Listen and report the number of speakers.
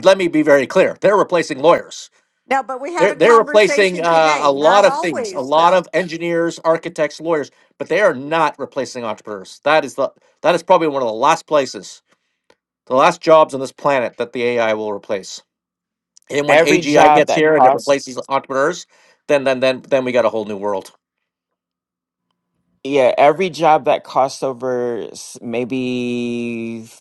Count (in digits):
3